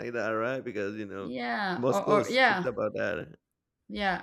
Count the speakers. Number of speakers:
two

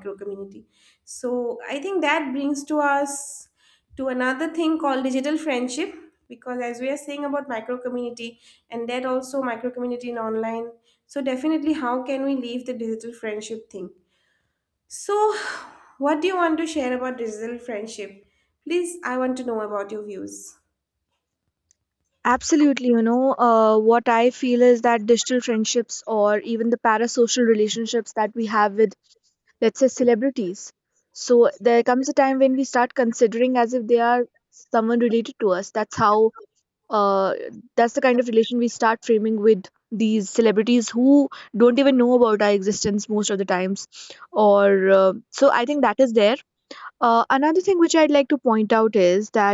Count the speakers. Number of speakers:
two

